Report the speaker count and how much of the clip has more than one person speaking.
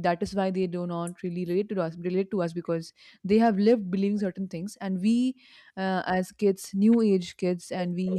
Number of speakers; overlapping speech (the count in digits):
1, no overlap